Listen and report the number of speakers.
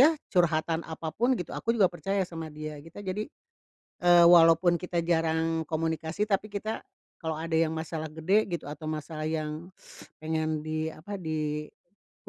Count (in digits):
1